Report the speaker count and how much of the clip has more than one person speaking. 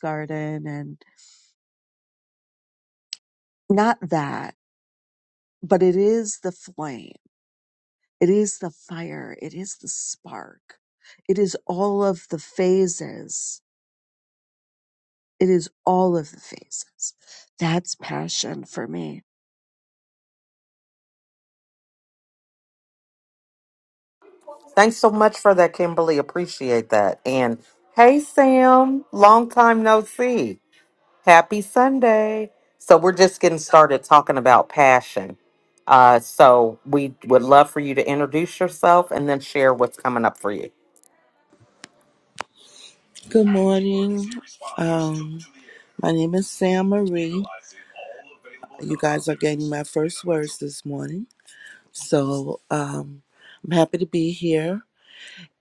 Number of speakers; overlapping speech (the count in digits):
3, no overlap